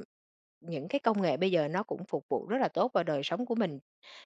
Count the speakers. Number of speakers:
one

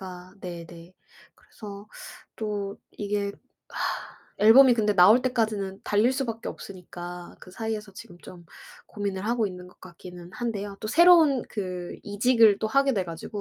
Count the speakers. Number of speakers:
one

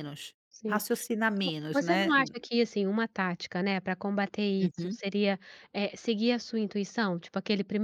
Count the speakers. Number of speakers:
two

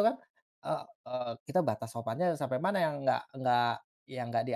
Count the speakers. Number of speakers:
one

